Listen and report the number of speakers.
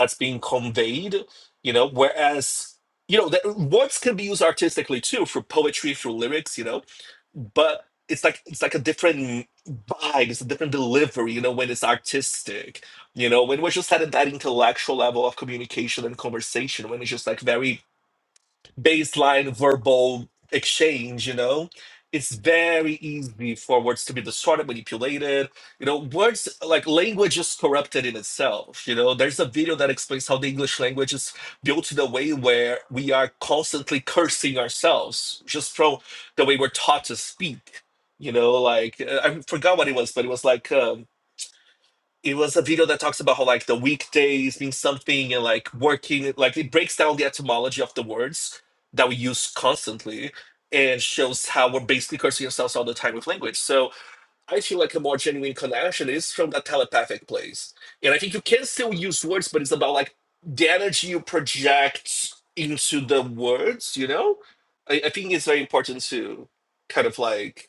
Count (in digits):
1